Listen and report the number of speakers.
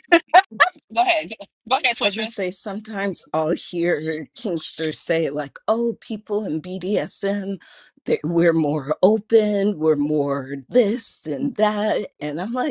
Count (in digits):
2